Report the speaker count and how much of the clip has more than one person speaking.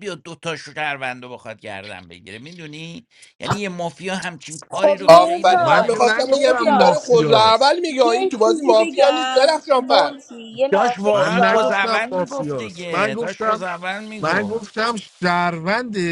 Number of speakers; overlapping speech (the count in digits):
4, about 51%